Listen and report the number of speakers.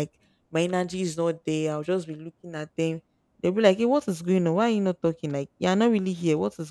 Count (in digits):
1